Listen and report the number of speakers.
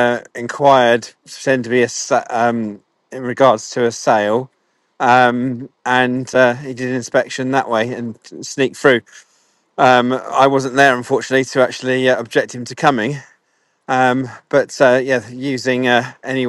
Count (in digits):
1